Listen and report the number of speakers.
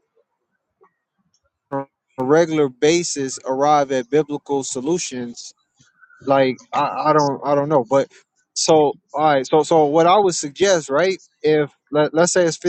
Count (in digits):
1